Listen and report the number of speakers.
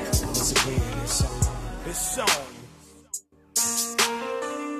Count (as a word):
zero